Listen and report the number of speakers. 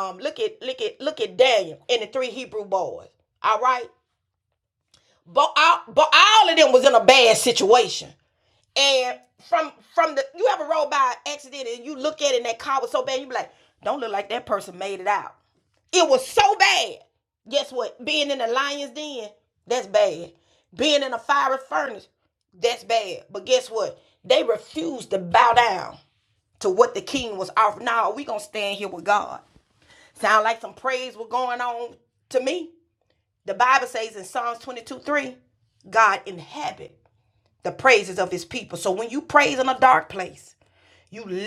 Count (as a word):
one